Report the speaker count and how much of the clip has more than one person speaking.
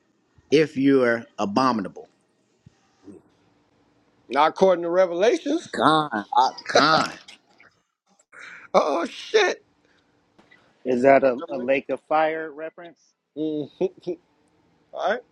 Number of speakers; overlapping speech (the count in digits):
3, no overlap